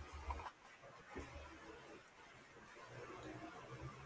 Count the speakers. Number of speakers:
0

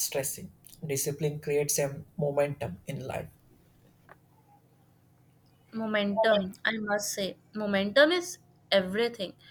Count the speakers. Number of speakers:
2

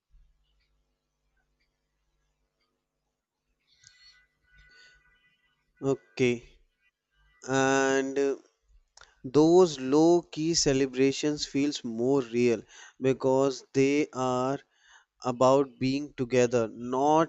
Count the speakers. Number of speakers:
1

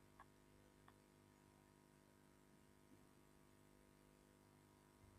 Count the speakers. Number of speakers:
0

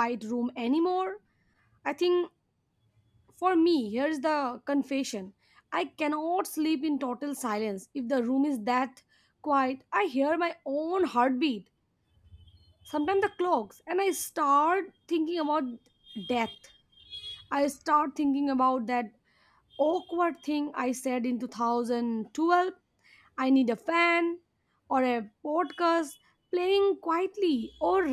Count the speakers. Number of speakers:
1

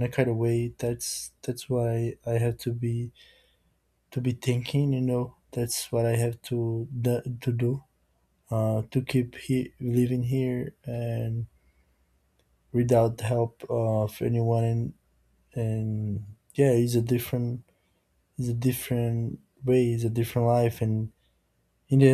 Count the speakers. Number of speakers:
1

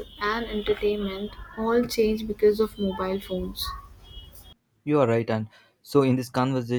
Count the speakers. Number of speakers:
2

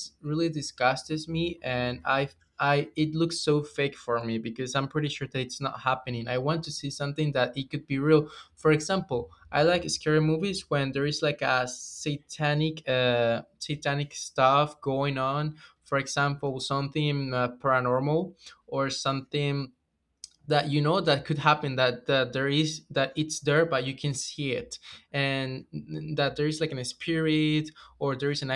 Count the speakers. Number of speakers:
1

